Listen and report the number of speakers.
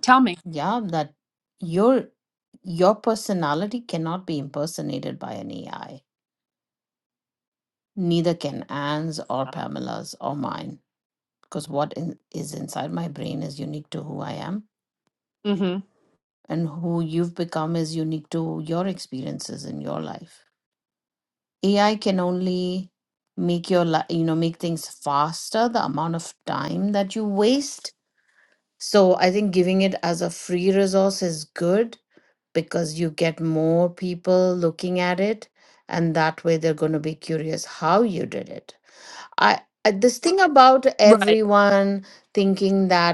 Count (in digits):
2